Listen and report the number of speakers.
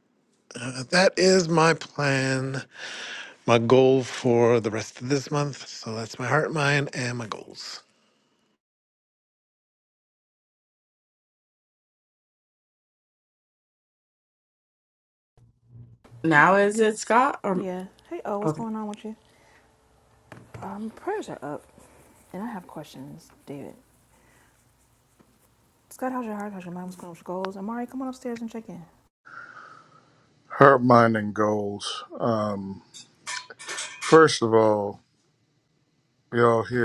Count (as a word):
four